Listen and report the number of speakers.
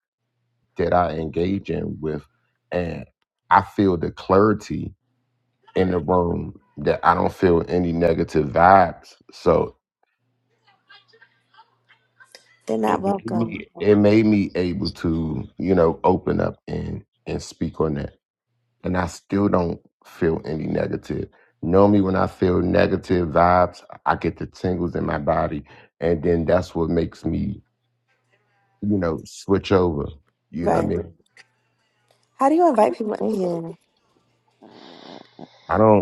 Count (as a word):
two